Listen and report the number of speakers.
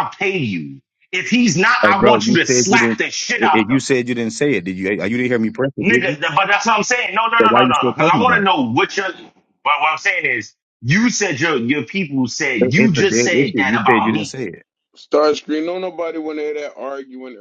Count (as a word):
three